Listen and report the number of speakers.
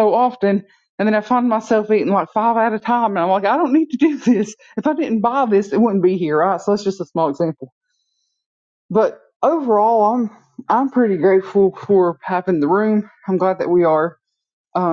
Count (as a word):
one